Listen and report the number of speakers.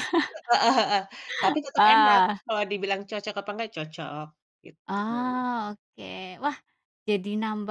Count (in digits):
2